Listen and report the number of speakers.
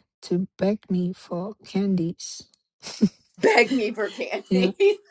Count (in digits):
2